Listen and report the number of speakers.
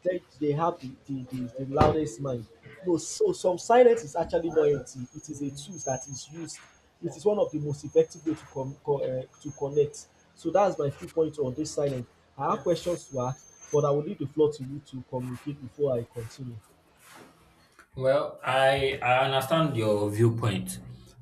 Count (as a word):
two